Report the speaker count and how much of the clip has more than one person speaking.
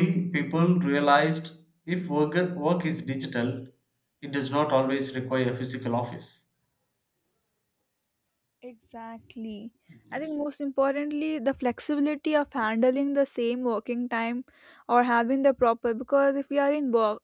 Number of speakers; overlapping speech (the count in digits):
2, about 1%